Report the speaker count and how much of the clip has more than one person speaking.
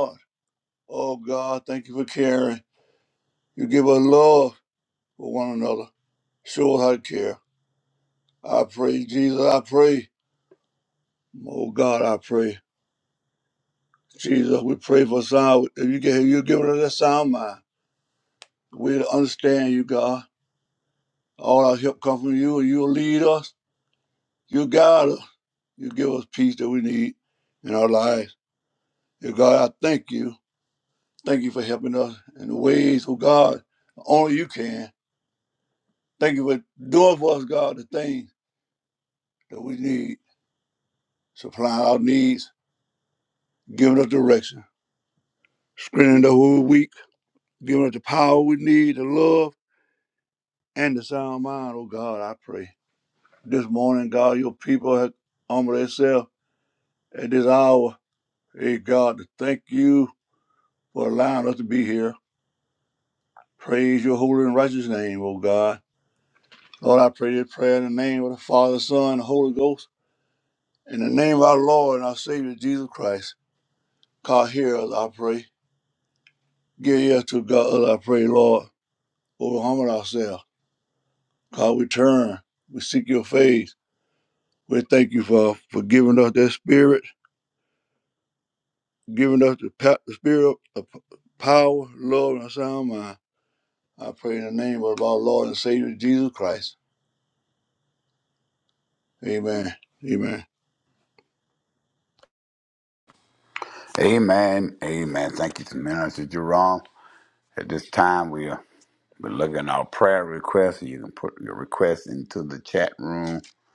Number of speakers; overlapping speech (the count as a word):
two, no overlap